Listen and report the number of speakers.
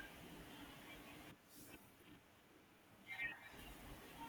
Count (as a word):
zero